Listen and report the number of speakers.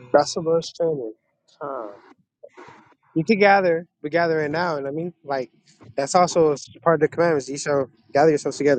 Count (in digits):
1